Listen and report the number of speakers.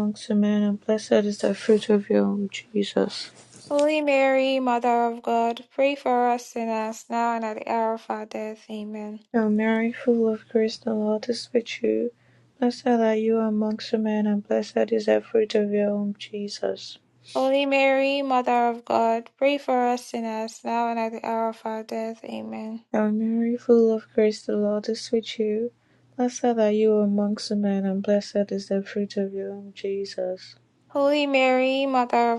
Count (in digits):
2